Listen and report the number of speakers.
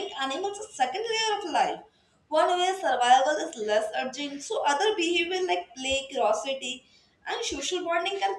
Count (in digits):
1